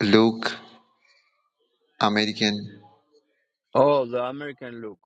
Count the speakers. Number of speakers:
2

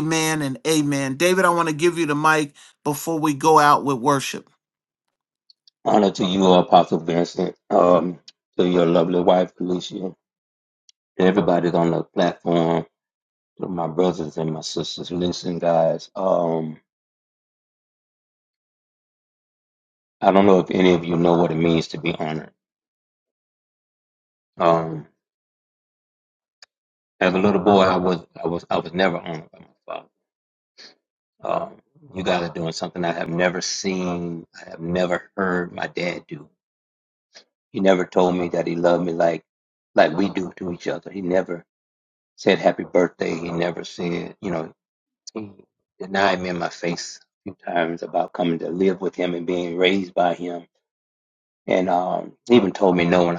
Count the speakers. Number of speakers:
2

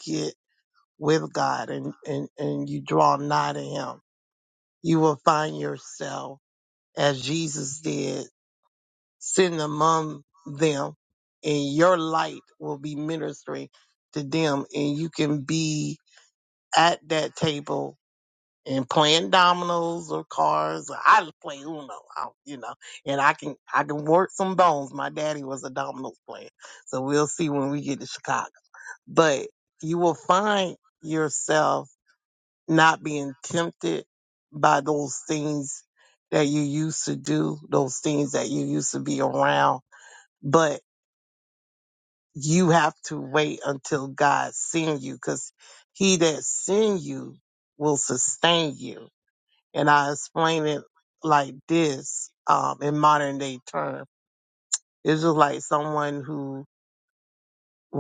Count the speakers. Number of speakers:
1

